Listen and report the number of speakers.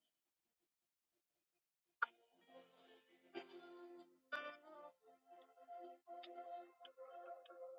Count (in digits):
0